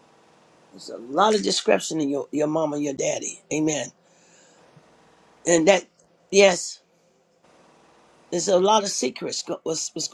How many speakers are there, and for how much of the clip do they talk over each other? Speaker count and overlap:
1, no overlap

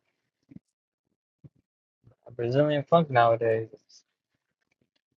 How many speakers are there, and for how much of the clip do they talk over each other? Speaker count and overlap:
1, no overlap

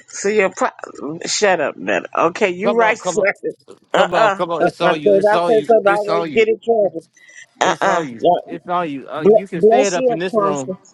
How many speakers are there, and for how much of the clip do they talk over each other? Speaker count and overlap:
2, about 51%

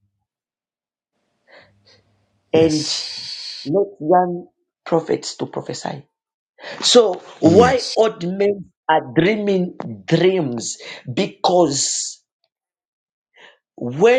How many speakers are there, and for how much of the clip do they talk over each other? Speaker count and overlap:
2, about 6%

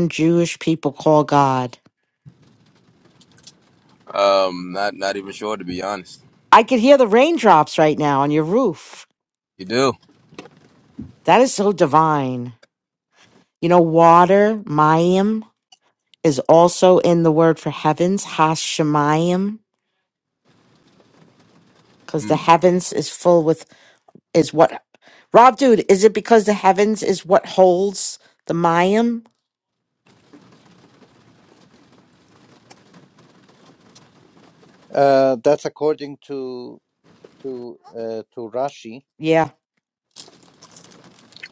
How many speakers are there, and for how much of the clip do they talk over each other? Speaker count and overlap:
3, under 1%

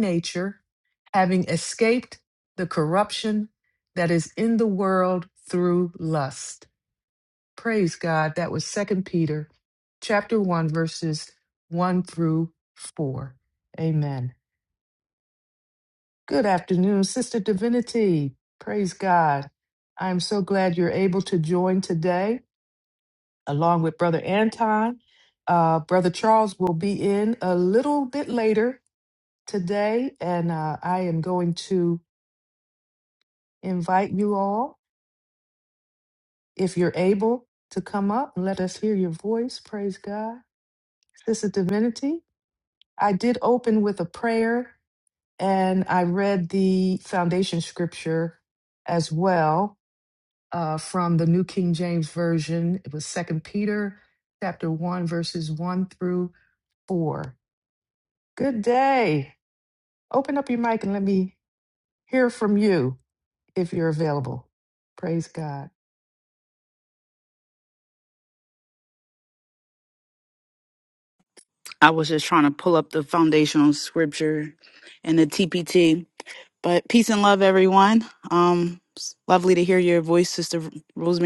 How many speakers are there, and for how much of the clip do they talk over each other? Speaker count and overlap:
2, no overlap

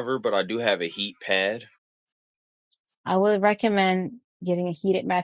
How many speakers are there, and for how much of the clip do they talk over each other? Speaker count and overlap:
2, no overlap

